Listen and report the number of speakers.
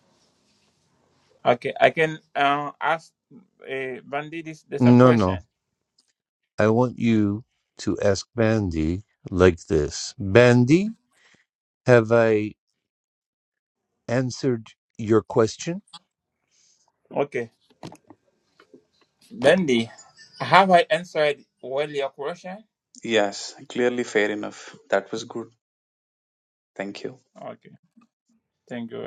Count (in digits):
3